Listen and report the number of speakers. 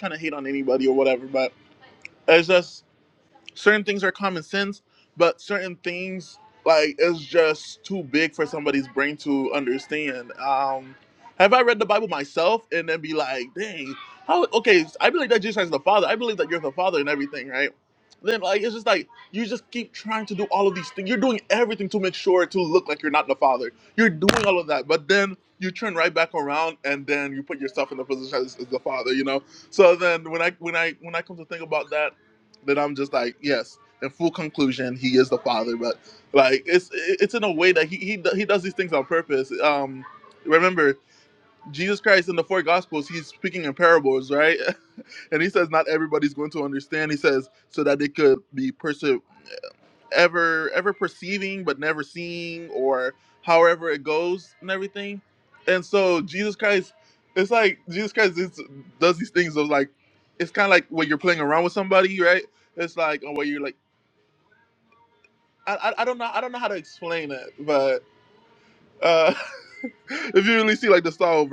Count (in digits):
1